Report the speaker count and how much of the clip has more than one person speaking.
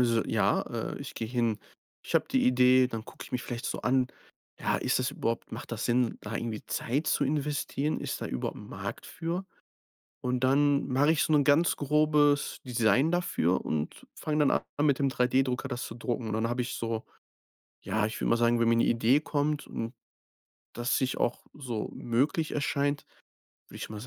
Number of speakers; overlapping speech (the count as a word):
one, no overlap